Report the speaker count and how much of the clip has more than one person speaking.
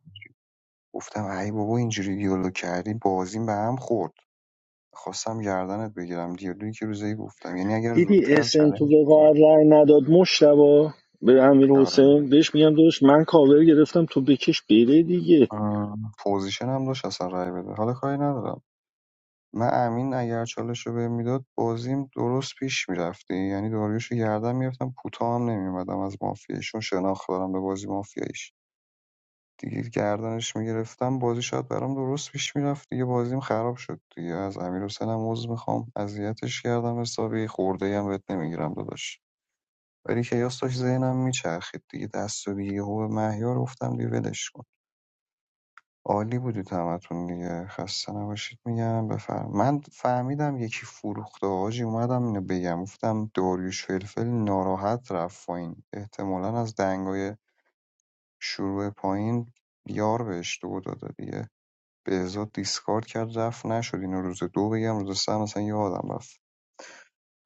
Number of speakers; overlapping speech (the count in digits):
2, about 2%